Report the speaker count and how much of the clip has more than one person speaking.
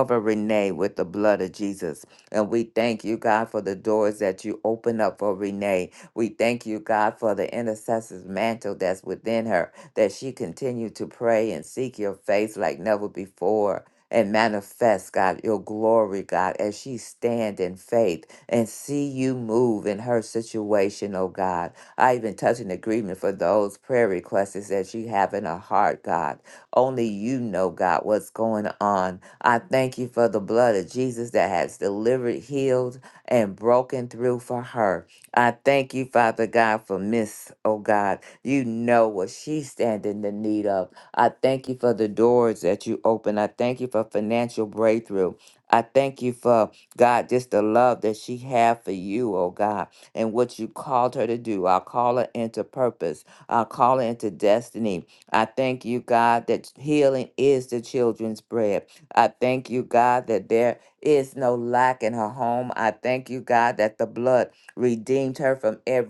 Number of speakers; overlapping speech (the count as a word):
one, no overlap